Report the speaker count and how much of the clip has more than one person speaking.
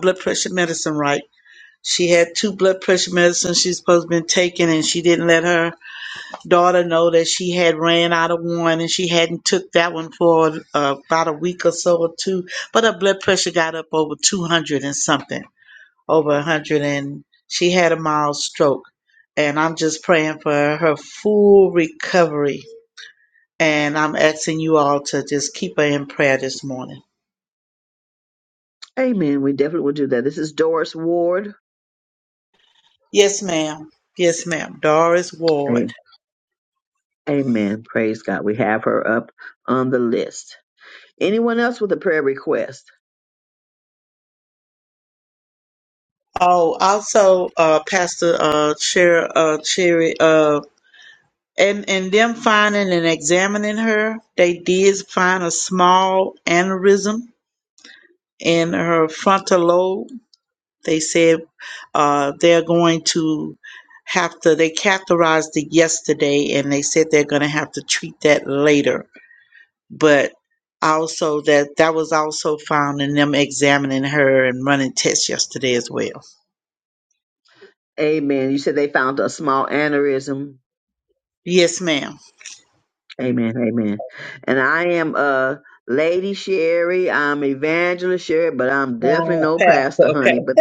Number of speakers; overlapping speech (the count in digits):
2, about 2%